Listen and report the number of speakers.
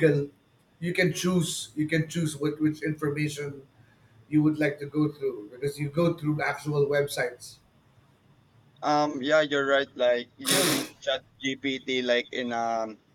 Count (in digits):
2